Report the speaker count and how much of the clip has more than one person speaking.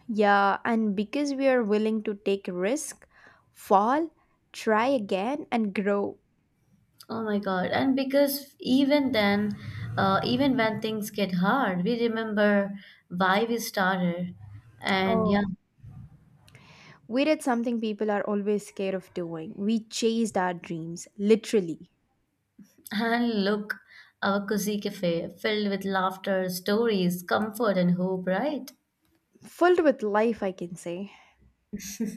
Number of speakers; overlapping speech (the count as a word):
two, about 1%